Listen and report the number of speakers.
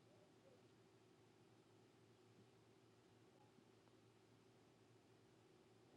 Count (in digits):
0